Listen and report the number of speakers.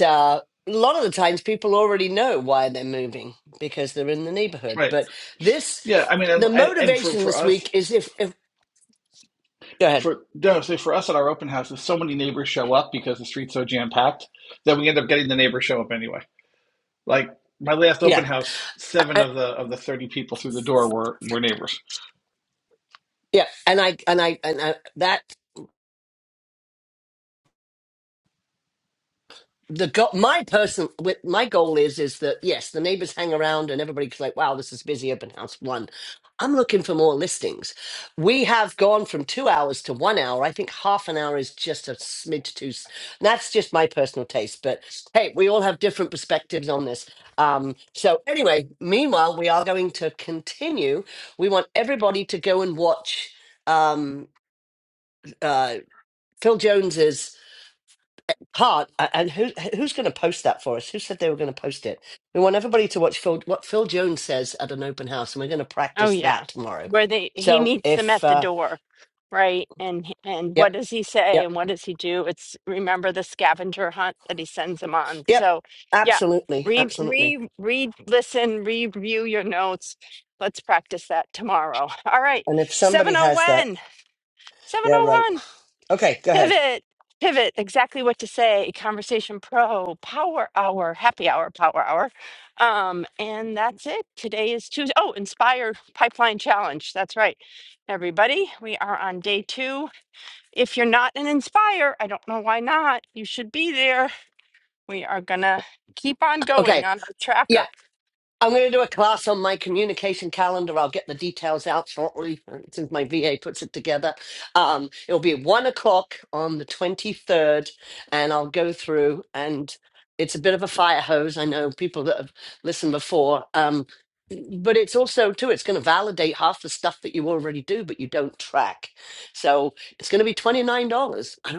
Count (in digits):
3